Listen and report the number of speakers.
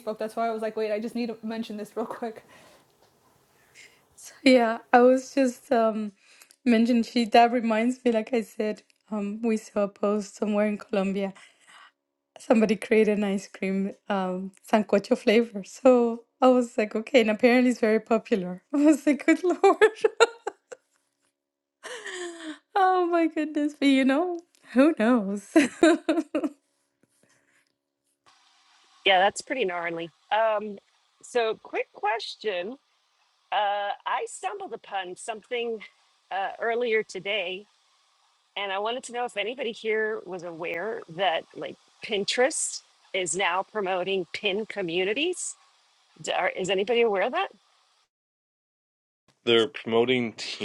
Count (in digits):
4